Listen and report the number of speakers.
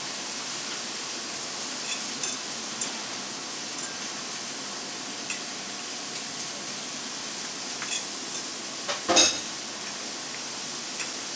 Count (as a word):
zero